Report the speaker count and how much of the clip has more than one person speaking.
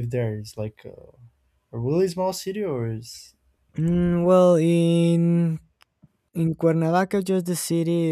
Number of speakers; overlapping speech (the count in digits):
2, no overlap